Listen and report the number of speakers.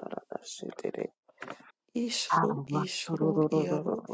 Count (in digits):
2